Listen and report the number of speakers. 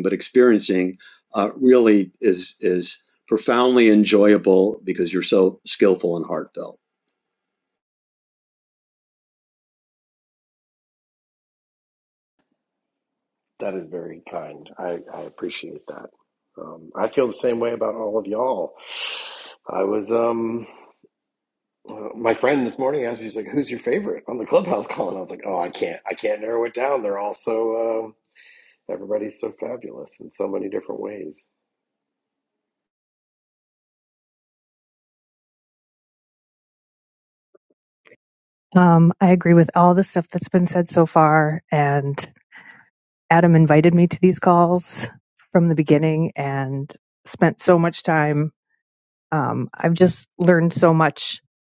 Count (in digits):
3